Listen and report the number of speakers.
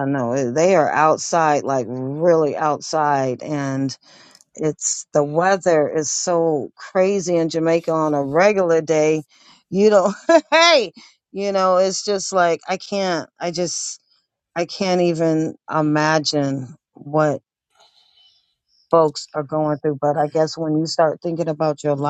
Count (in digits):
1